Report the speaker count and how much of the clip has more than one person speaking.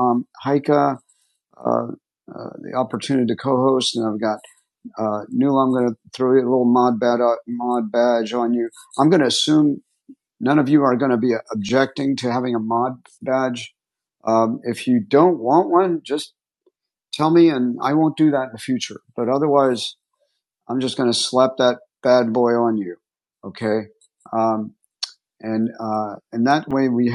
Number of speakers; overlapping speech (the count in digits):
1, no overlap